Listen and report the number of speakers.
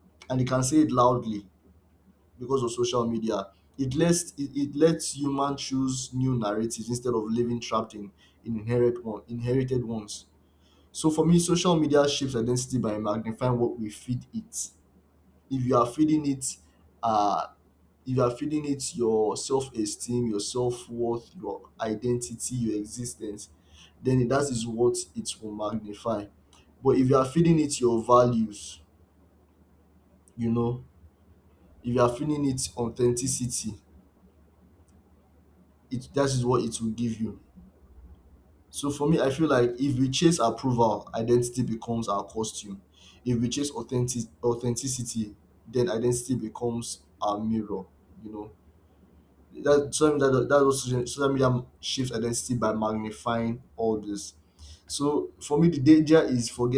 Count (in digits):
1